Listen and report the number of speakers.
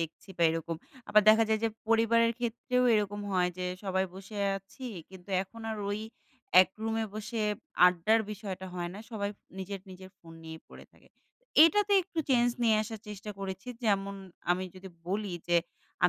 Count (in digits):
1